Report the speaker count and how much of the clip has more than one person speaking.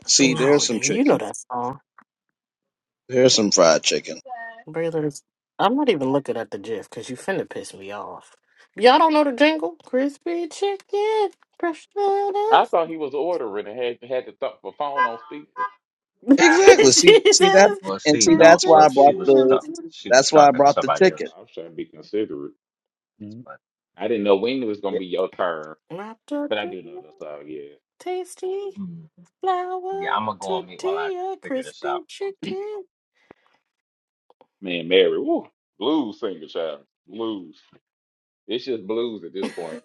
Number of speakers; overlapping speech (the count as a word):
four, about 17%